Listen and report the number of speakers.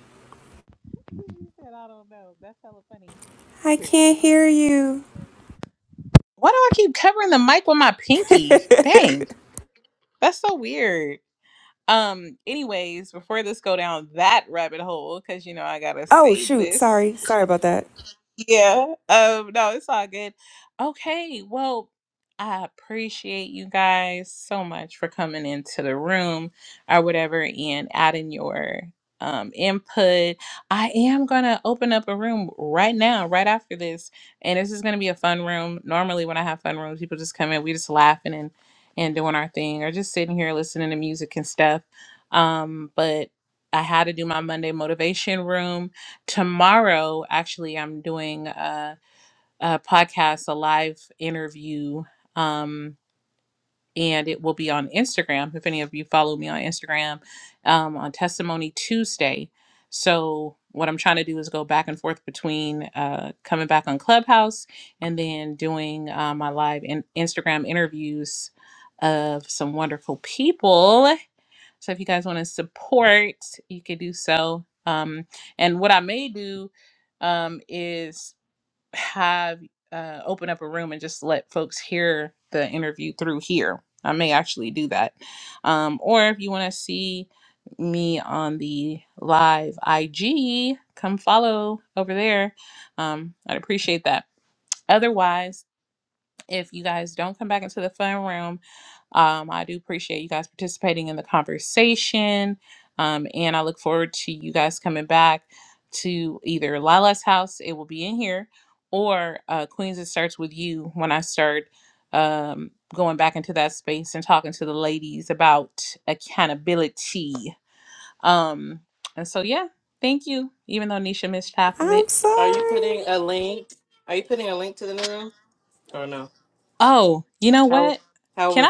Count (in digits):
3